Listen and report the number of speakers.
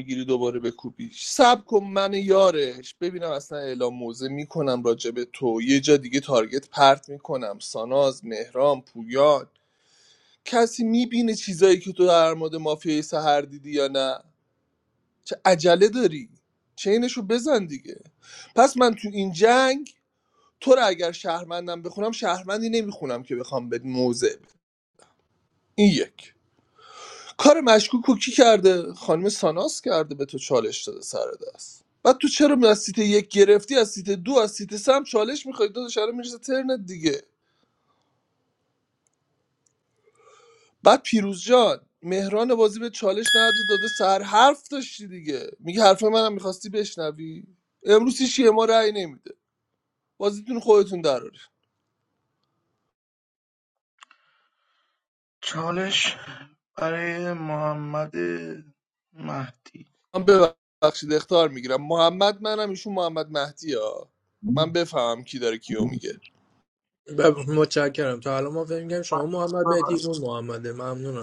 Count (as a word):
three